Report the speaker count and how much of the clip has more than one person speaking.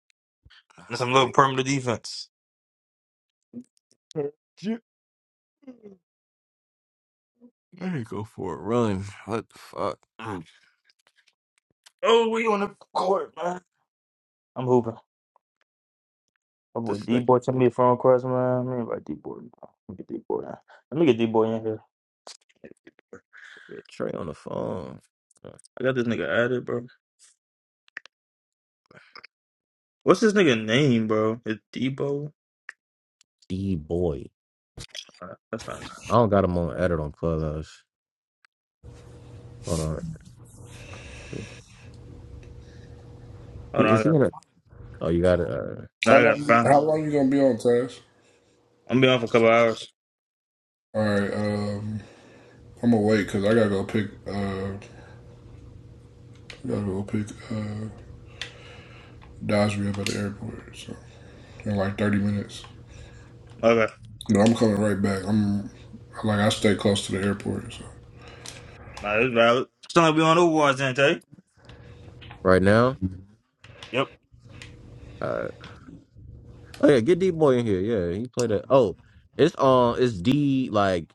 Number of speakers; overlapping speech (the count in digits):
3, about 2%